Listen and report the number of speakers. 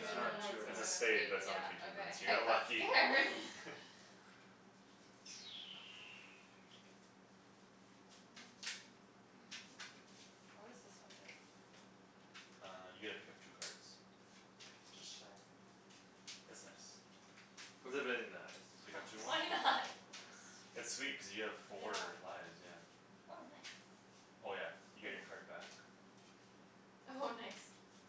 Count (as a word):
four